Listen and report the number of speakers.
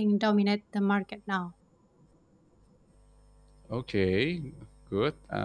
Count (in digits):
2